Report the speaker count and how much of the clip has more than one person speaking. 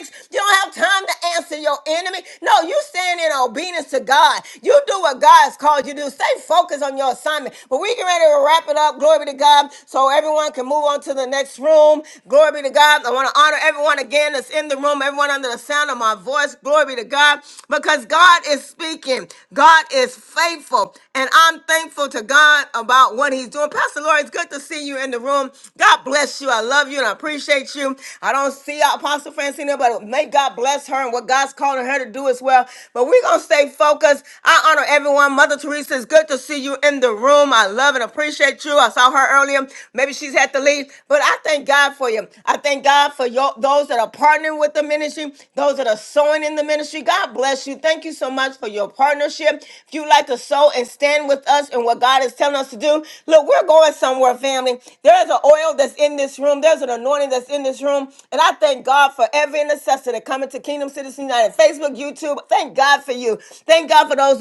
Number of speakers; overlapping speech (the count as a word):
one, no overlap